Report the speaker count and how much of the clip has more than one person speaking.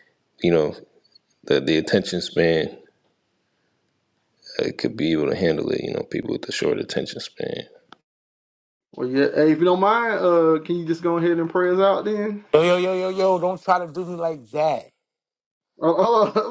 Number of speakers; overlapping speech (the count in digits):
3, no overlap